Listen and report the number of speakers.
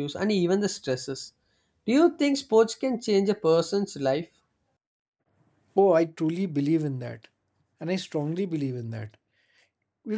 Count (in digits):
2